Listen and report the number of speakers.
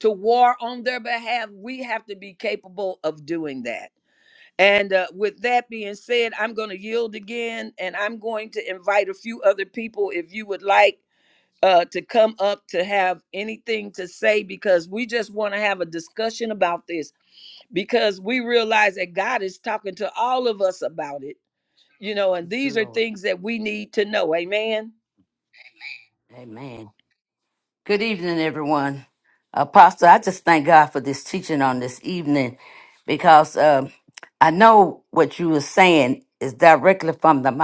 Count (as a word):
two